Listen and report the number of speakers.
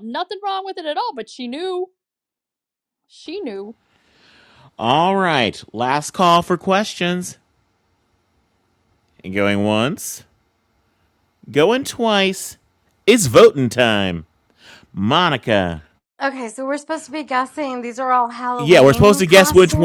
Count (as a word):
three